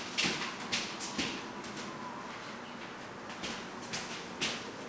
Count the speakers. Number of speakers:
zero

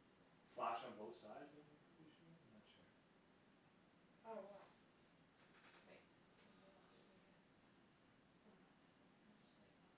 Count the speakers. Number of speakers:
two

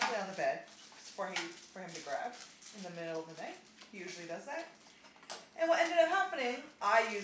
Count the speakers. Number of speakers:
one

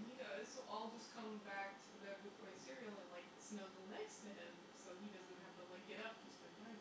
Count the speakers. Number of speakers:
one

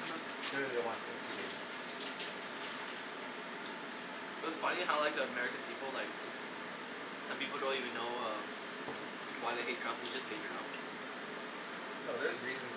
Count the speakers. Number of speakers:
two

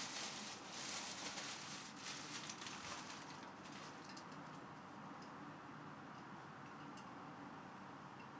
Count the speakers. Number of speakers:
zero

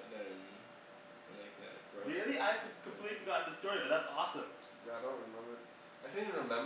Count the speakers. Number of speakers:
three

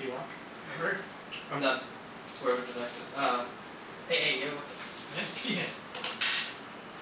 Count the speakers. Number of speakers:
two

